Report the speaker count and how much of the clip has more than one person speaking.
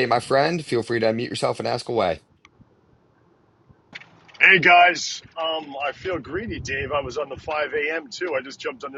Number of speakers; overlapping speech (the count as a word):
two, no overlap